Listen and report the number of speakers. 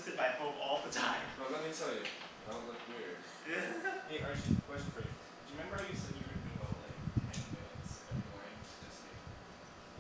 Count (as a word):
three